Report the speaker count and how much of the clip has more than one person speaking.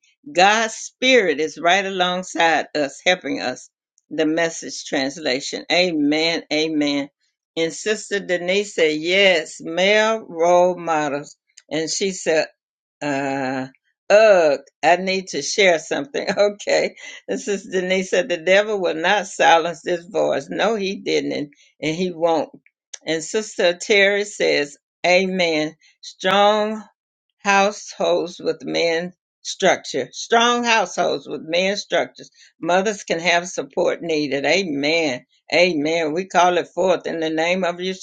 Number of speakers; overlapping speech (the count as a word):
one, no overlap